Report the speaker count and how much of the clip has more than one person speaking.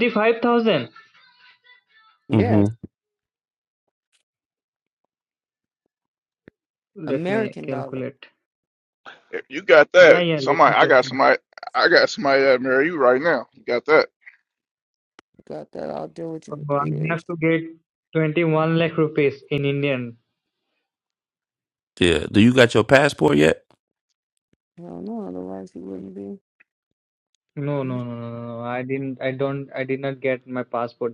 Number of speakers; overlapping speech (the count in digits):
4, about 10%